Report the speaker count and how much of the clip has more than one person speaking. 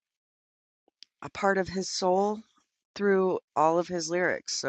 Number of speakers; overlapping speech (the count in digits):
1, no overlap